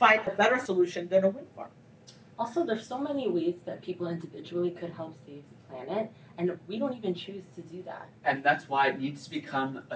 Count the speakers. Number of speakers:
three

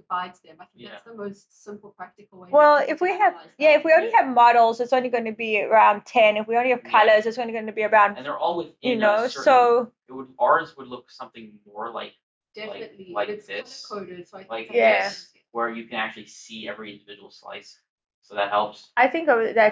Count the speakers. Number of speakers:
three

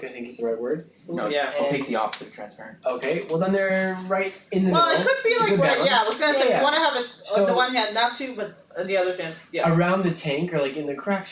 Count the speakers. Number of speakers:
three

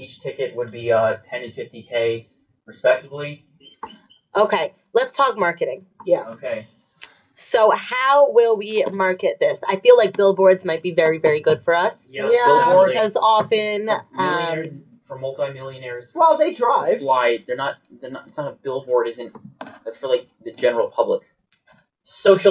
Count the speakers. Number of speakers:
four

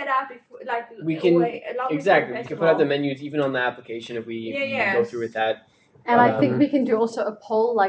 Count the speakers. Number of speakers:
three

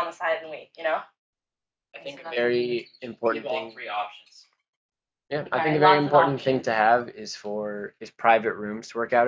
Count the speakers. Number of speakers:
three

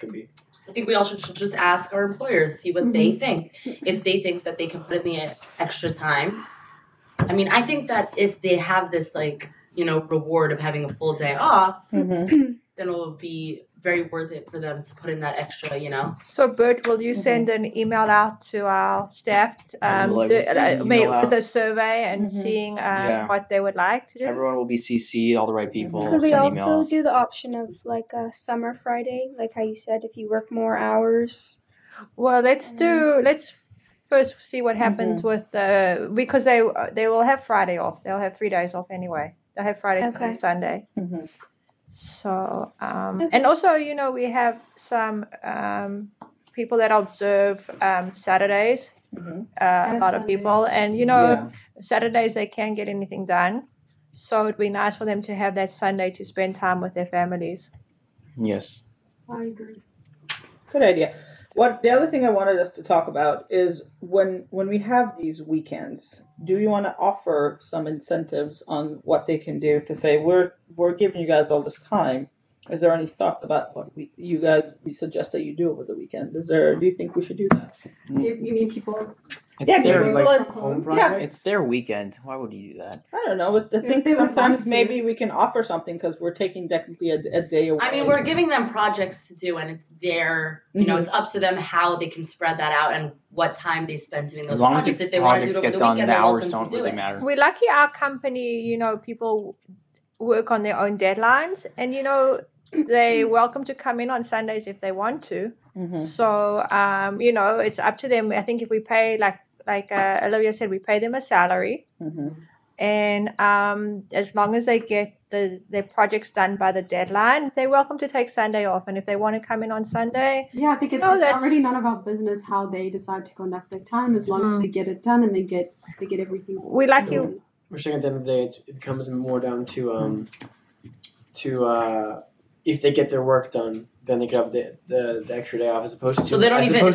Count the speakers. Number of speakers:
seven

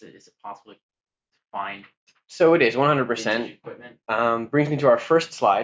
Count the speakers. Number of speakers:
two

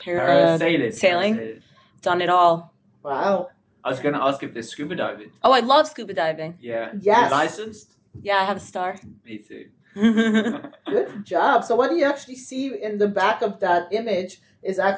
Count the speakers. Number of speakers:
three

